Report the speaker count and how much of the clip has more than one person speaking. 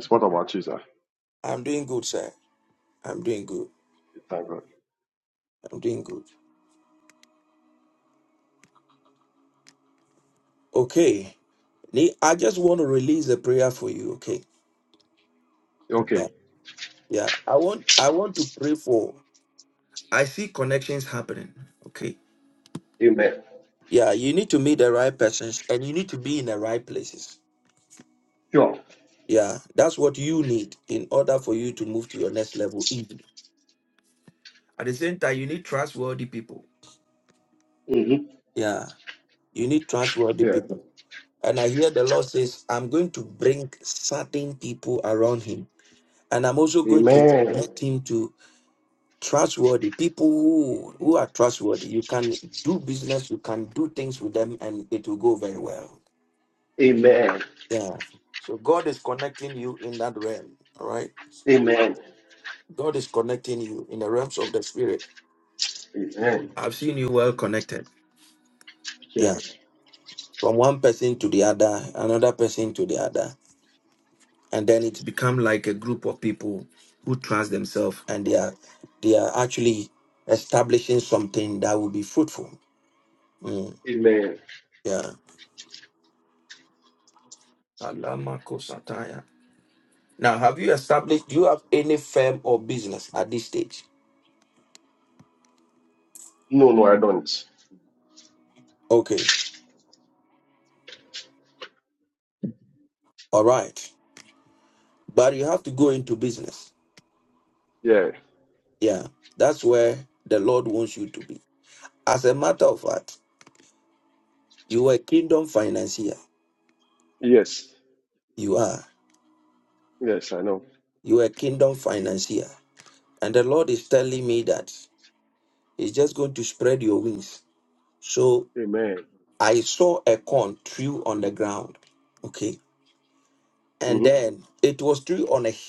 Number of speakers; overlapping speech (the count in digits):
2, about 1%